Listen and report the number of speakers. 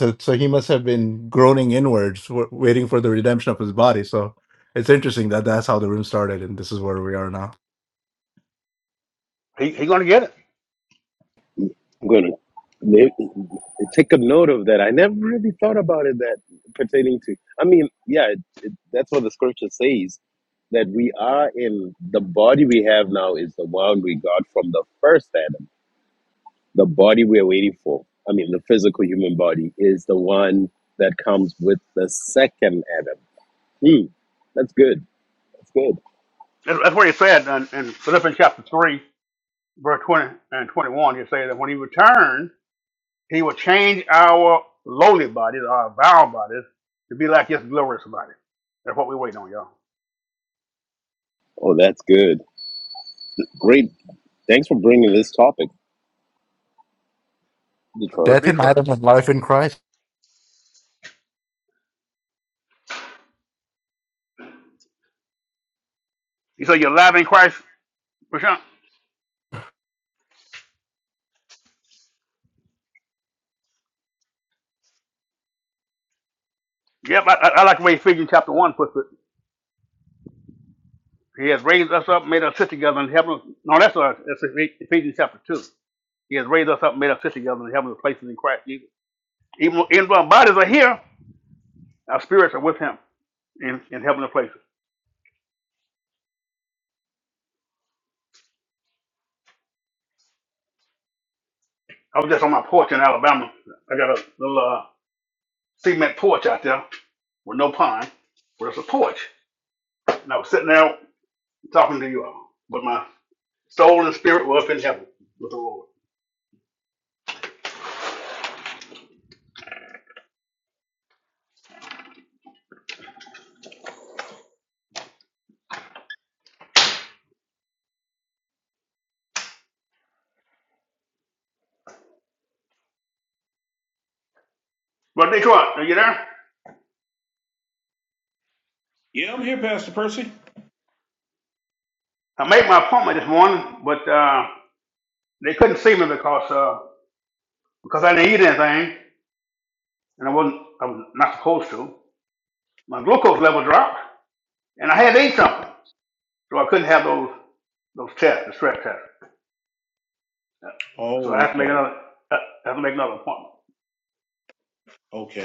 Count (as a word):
four